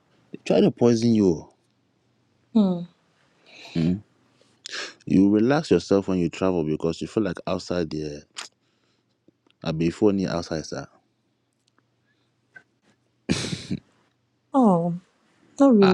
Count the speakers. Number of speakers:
2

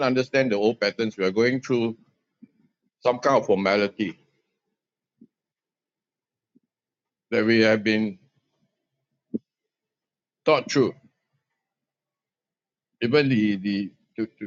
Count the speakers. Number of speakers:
1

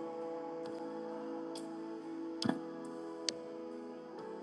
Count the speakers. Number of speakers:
0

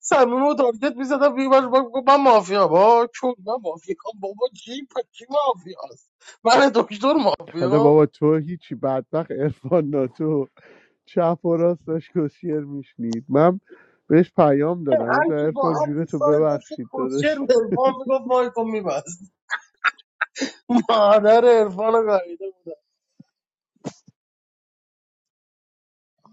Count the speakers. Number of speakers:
2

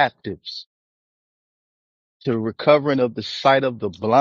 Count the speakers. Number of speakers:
1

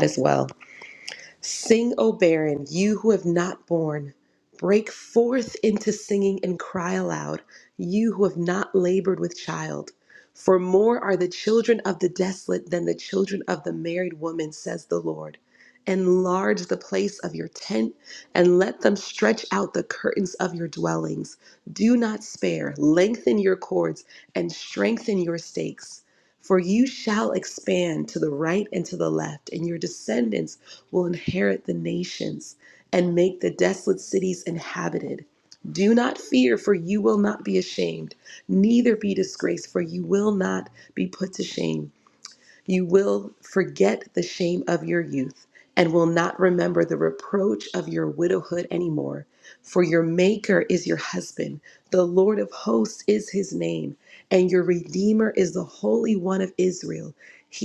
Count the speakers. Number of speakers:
1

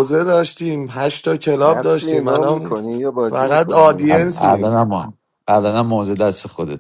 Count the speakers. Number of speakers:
3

